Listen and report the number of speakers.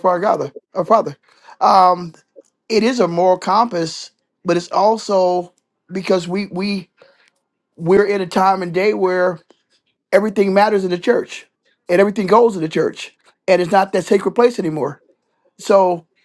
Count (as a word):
one